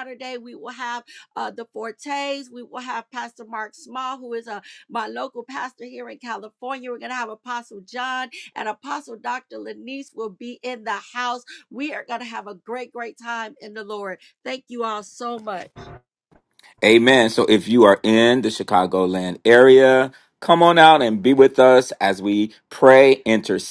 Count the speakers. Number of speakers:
two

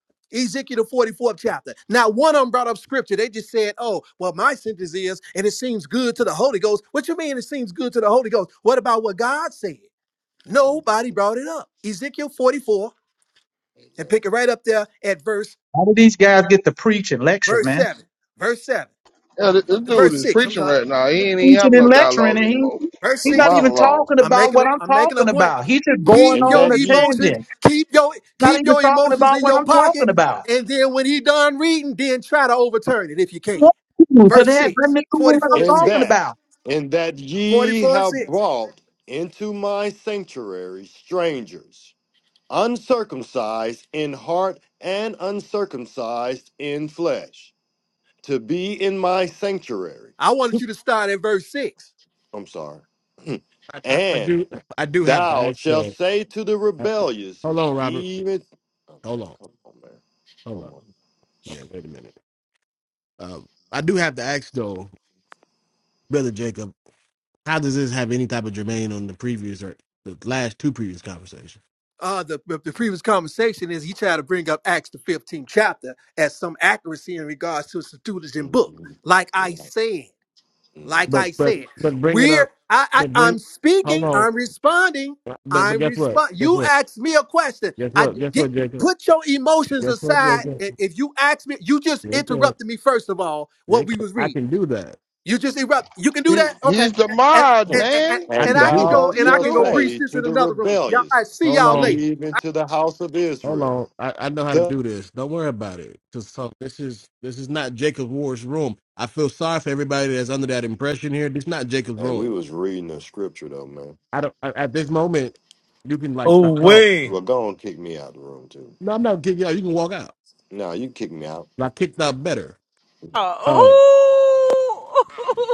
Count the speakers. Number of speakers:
six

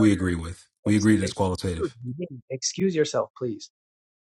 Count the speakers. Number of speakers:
two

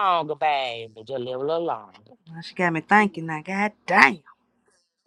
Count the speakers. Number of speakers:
two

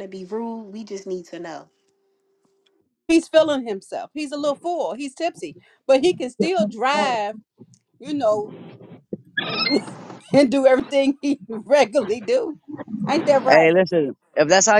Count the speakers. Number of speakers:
three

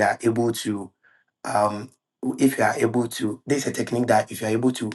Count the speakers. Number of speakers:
one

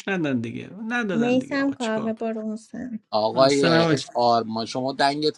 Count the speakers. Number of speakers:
three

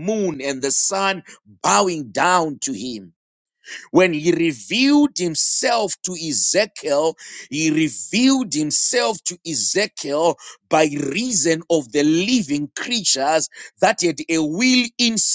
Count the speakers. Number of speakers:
one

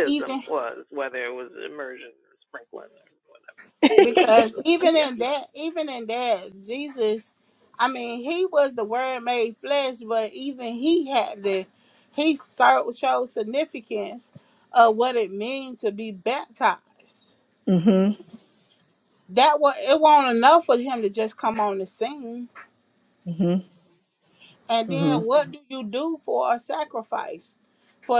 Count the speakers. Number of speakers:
three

